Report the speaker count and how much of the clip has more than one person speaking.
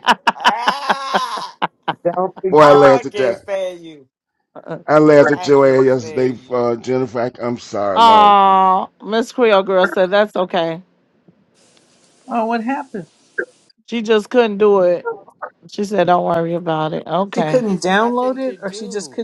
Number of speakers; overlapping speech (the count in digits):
4, about 23%